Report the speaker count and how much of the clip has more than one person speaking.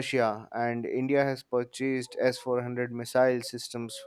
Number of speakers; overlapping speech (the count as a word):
one, no overlap